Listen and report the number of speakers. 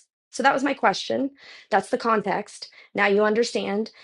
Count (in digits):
1